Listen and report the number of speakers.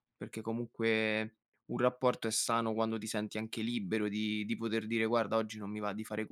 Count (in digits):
1